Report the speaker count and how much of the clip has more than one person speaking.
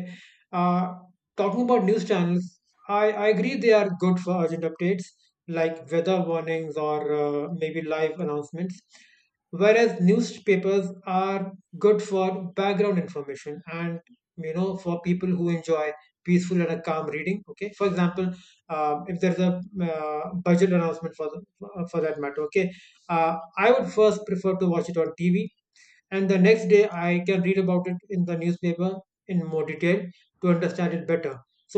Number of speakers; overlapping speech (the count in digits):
1, no overlap